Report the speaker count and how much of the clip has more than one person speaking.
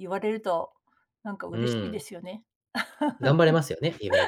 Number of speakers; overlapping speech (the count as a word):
two, about 11%